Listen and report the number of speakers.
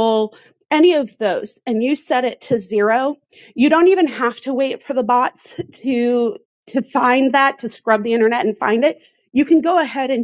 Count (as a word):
one